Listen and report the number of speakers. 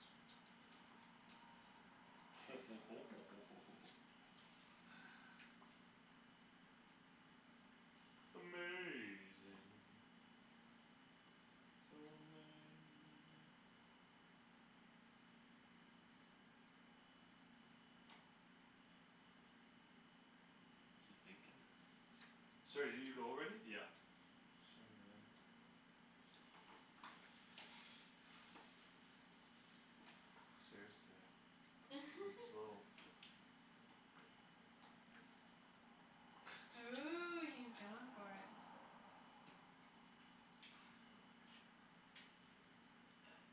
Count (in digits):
3